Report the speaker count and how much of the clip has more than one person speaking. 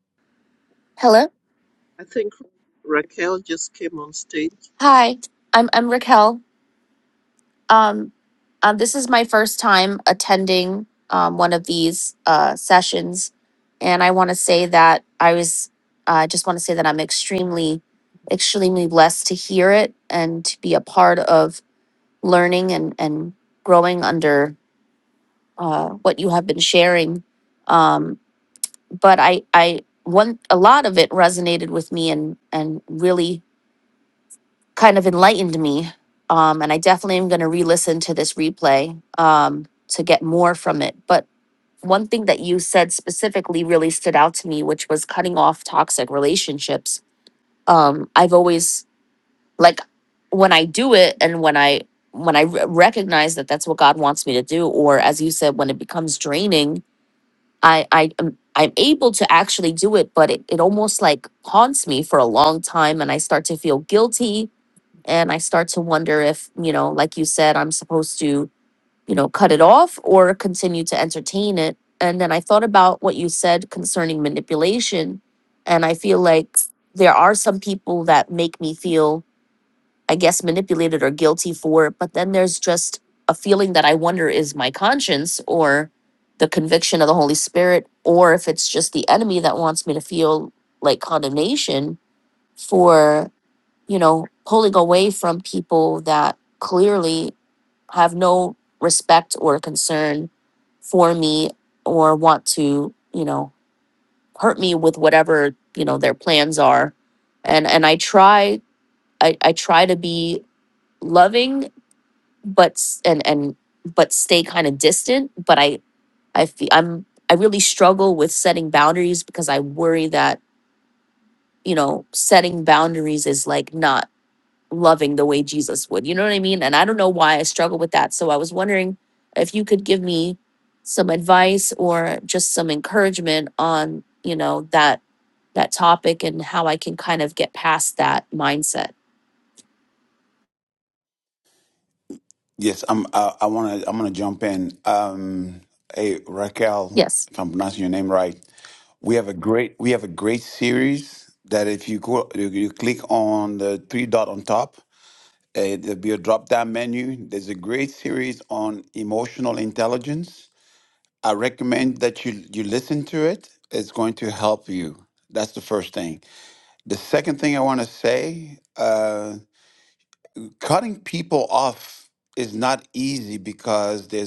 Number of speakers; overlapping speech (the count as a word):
three, under 1%